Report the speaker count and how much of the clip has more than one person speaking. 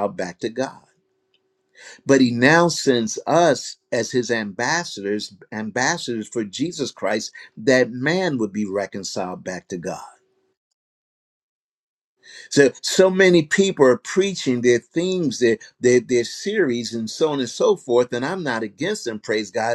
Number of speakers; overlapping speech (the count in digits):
1, no overlap